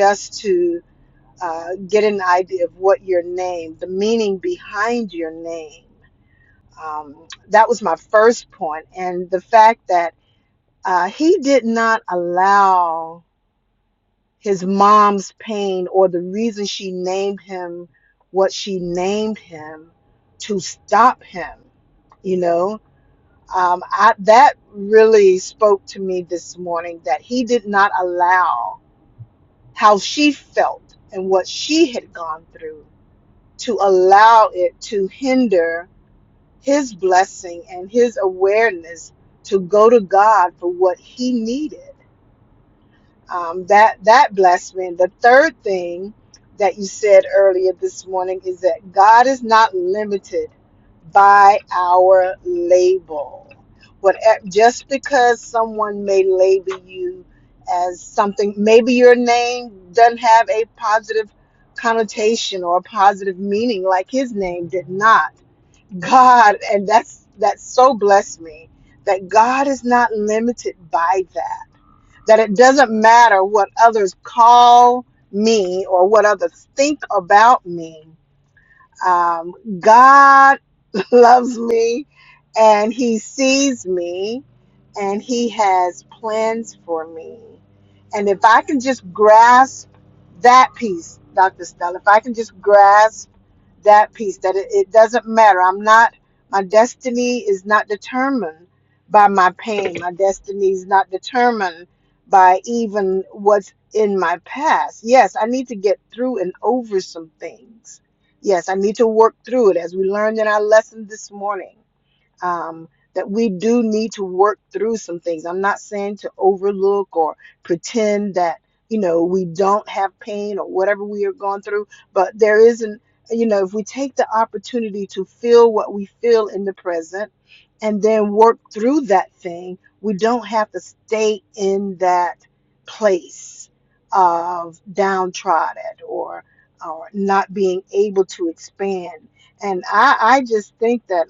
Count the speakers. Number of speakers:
1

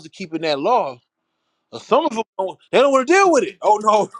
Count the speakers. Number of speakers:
1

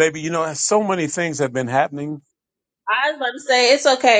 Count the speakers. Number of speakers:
2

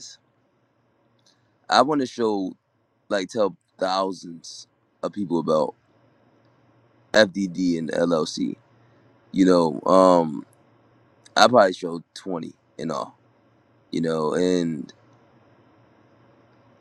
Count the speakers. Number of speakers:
1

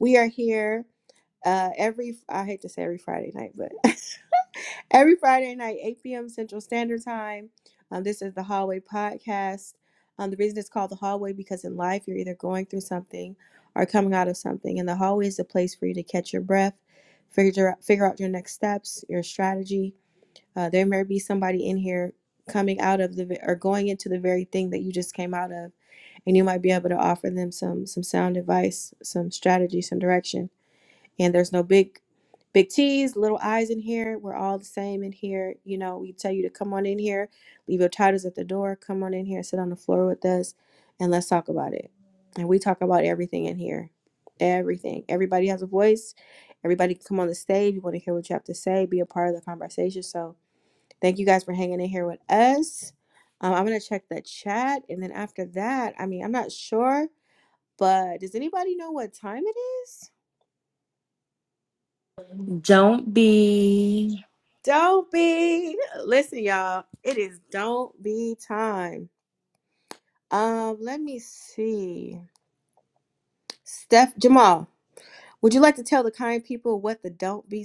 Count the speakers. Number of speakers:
2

